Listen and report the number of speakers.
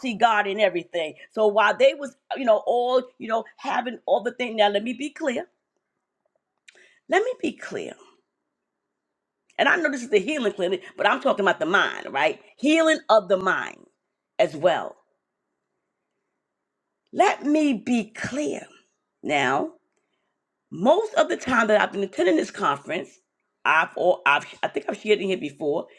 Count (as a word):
one